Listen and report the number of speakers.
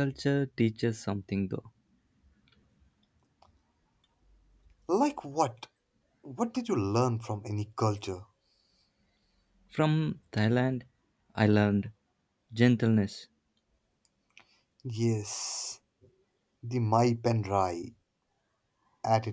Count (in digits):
2